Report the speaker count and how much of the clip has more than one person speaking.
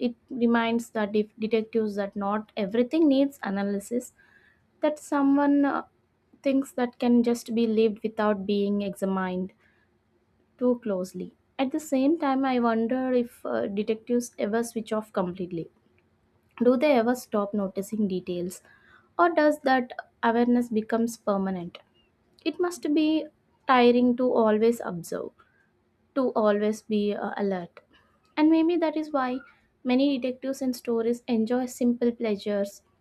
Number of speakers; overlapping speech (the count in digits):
1, no overlap